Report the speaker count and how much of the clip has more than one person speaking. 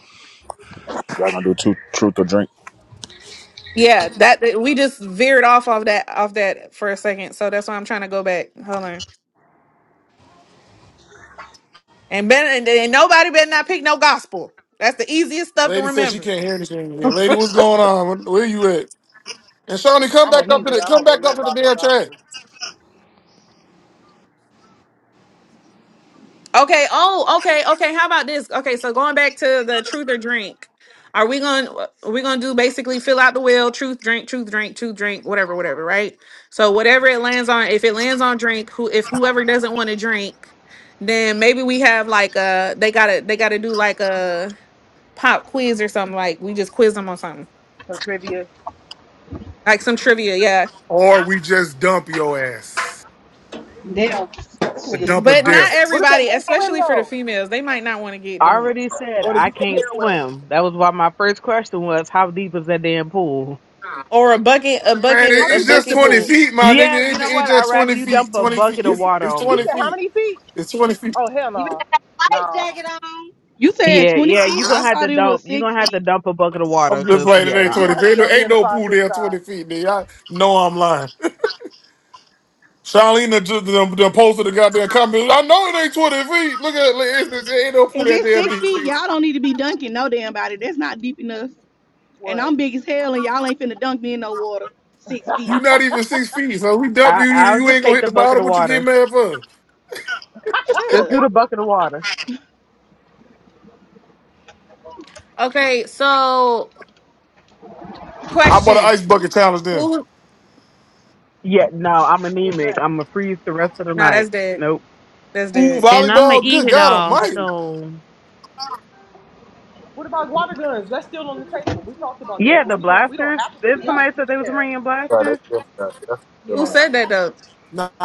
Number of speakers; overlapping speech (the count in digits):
8, about 19%